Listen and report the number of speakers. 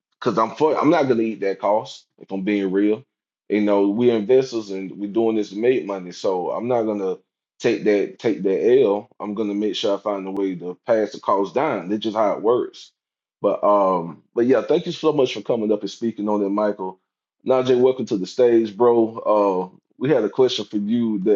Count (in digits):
1